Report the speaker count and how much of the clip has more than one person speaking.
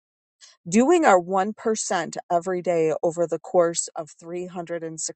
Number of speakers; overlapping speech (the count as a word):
one, no overlap